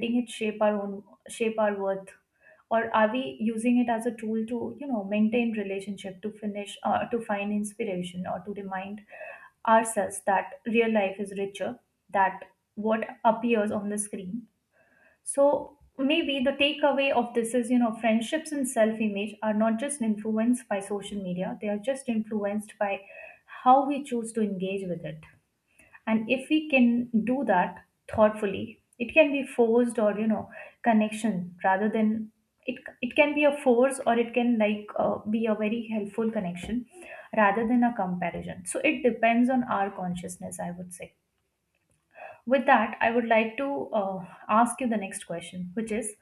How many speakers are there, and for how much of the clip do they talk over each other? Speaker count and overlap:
one, no overlap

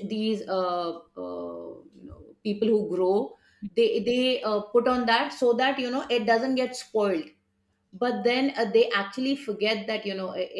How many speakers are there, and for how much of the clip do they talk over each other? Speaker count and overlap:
one, no overlap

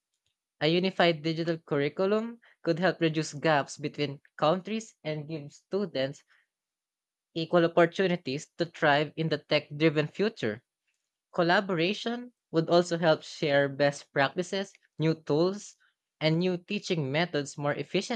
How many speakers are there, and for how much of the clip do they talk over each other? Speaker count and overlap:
one, no overlap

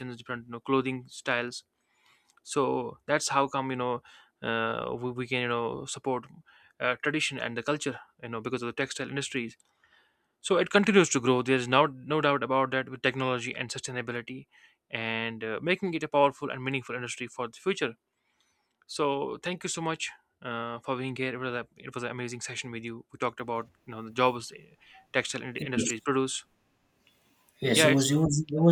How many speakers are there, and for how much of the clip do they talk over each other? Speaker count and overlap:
two, about 2%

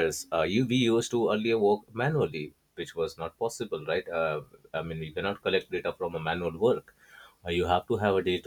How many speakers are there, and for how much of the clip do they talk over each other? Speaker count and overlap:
one, no overlap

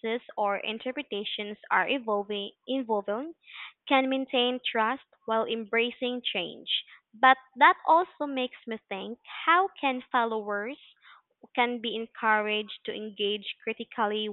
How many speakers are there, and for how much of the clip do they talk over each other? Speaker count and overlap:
one, no overlap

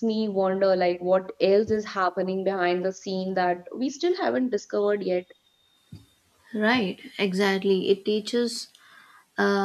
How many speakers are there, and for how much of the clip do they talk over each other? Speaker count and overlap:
two, no overlap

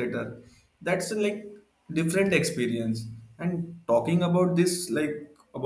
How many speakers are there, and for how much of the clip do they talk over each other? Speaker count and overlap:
one, no overlap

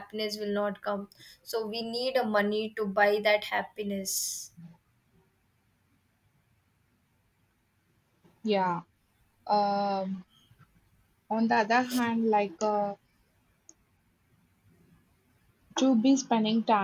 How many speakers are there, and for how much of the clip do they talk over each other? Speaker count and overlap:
two, no overlap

